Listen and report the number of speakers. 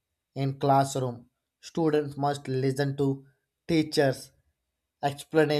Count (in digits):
1